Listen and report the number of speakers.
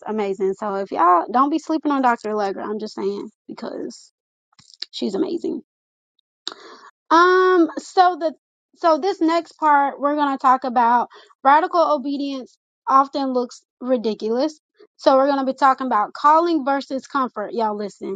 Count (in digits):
1